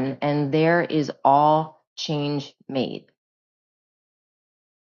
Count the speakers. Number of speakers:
1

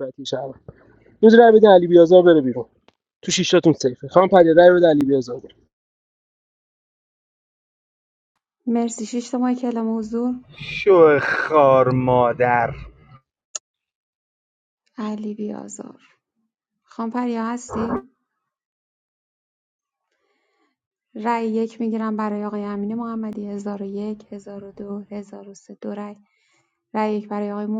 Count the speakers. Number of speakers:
3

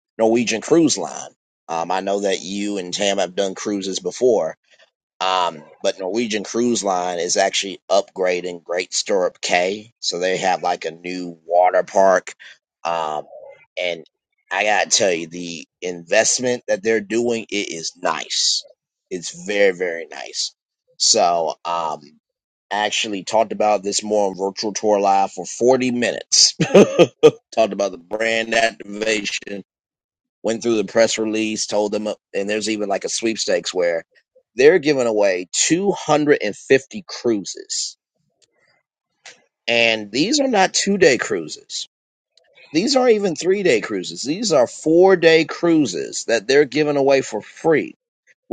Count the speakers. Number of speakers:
1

